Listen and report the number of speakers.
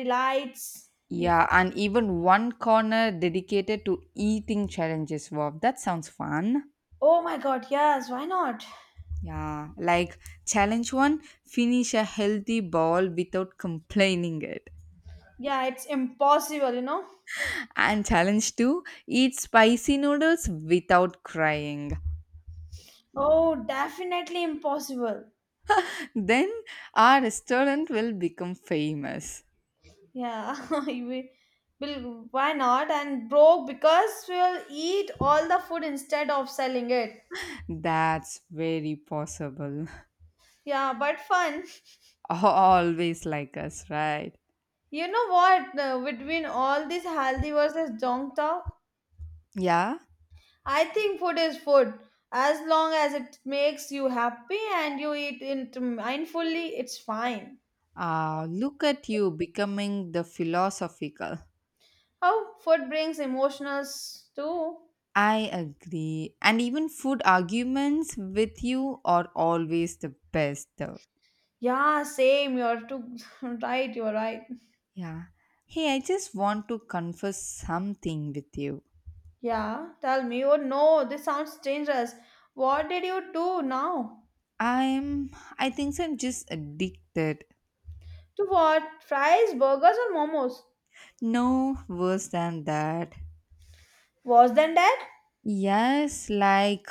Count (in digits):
2